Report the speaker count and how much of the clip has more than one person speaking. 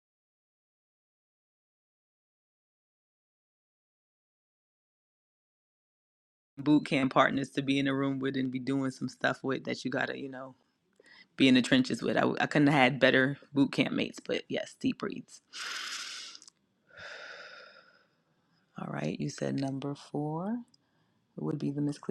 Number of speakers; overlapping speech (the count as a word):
one, no overlap